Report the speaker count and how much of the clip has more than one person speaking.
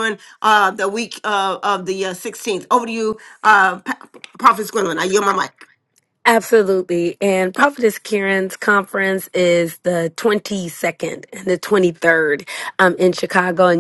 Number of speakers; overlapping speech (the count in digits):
2, no overlap